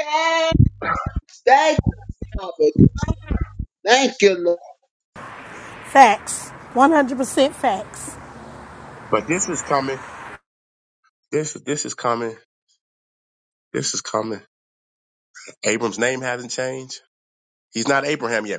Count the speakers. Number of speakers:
three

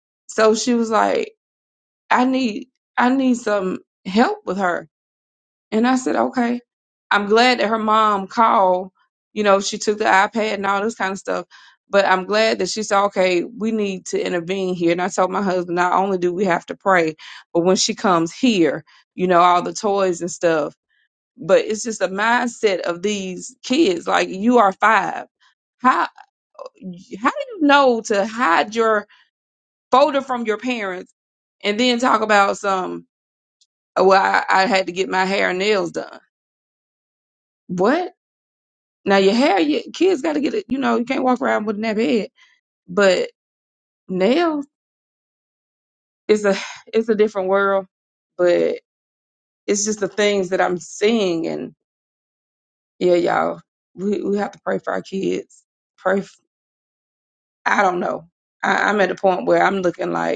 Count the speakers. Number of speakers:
one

